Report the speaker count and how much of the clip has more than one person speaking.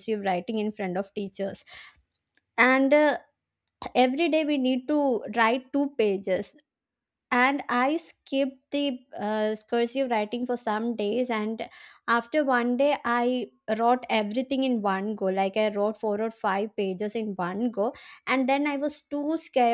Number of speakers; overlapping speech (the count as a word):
one, no overlap